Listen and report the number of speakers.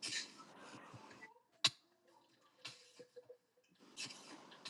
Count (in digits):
0